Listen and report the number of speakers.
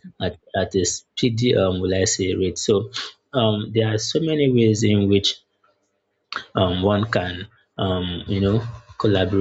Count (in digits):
1